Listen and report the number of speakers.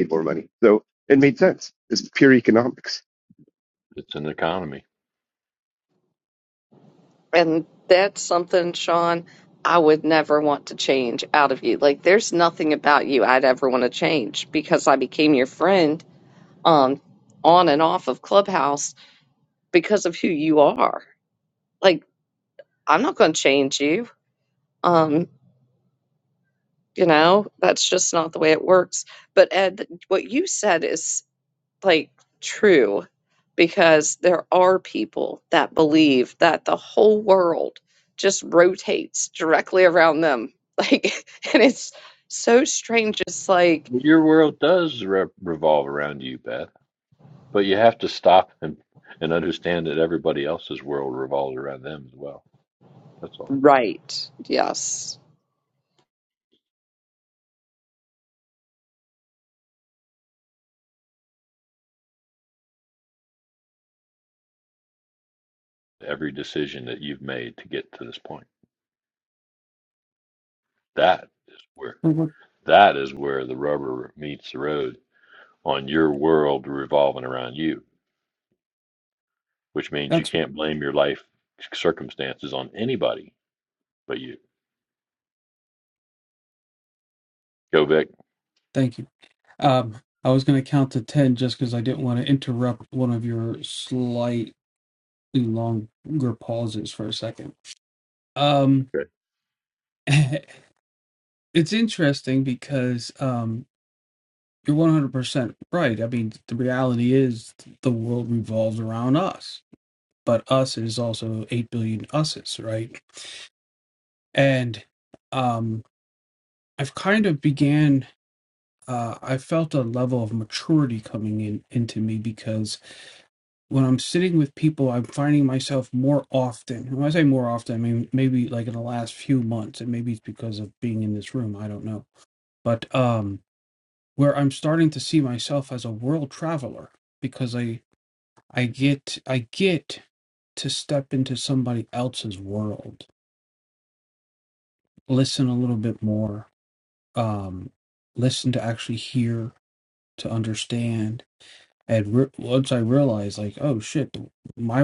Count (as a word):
four